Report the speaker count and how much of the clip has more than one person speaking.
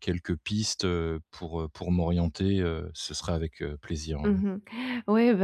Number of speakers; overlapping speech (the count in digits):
2, no overlap